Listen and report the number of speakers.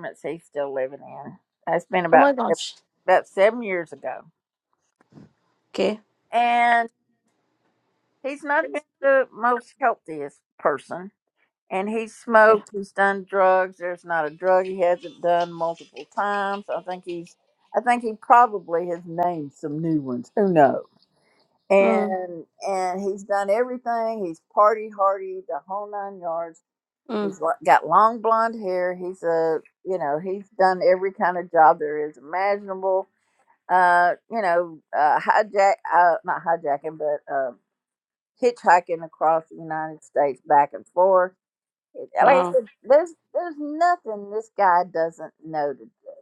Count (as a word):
two